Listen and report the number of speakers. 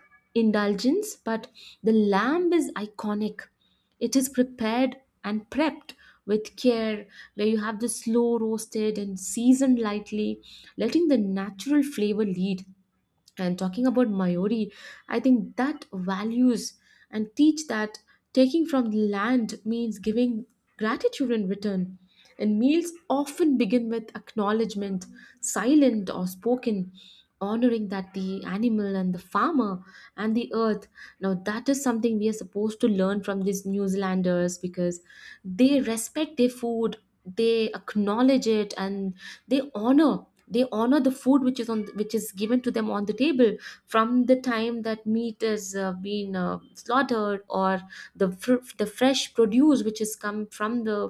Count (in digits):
1